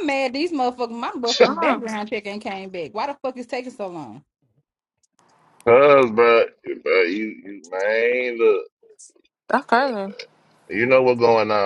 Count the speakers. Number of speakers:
3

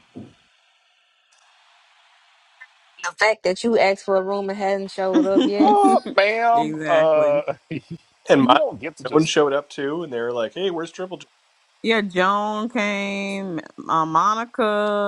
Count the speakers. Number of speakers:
4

